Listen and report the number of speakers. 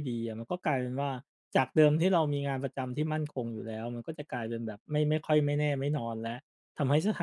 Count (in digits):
1